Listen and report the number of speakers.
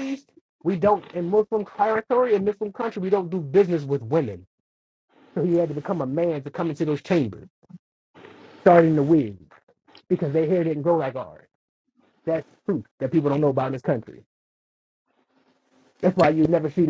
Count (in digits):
1